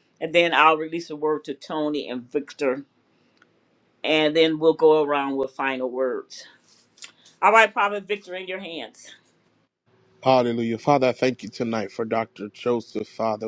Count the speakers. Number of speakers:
two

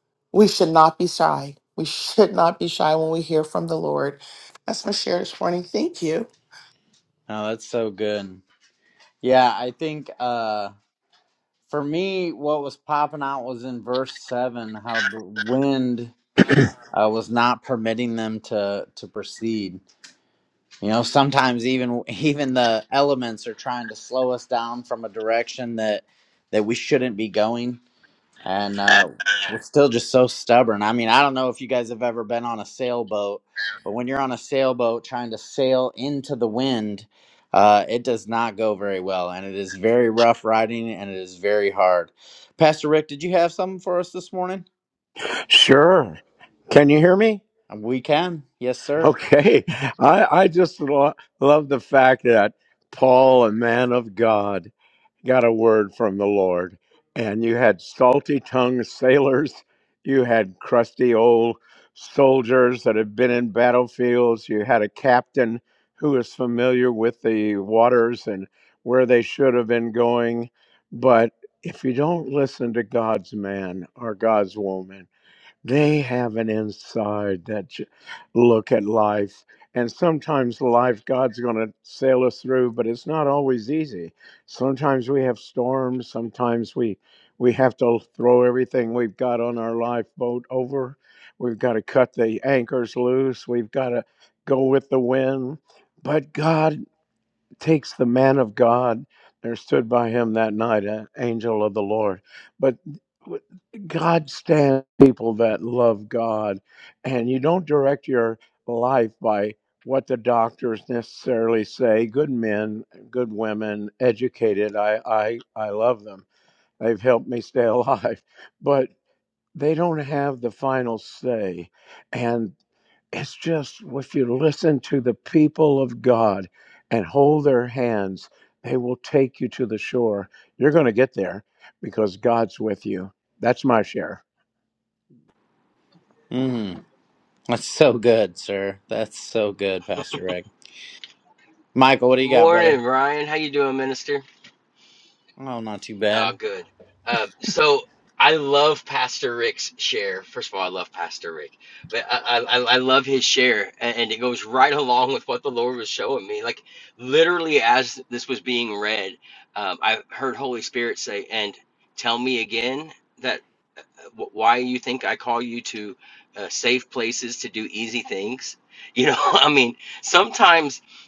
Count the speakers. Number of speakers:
four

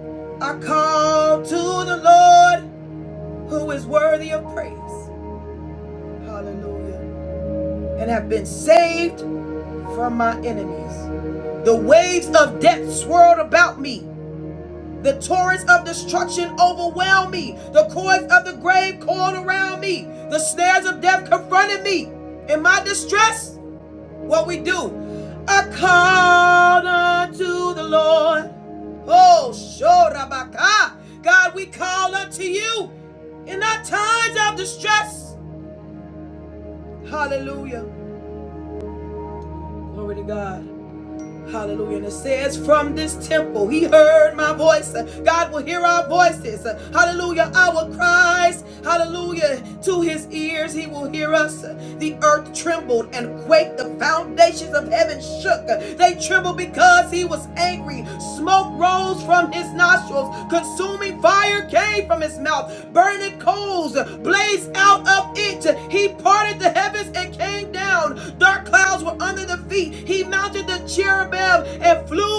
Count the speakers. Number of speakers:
one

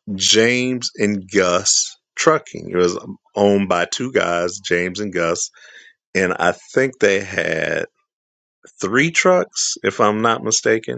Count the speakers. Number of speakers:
one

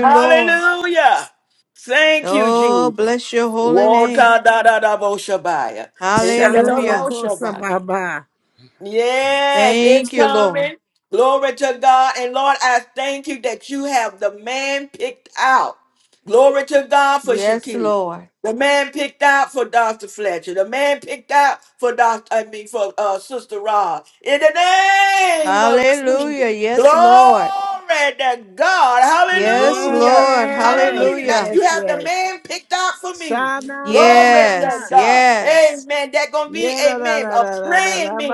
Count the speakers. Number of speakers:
three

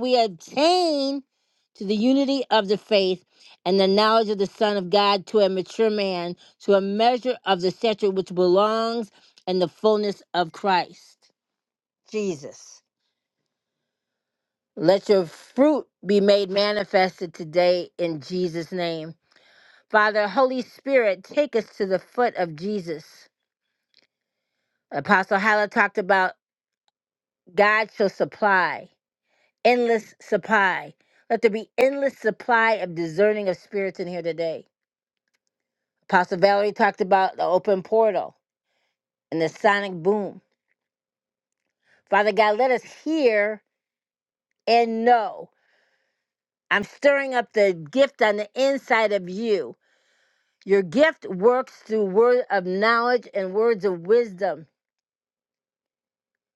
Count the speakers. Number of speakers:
one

